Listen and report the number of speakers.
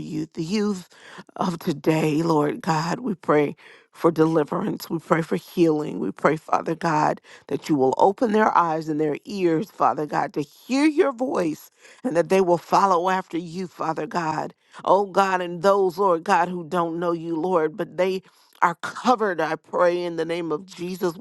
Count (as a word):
one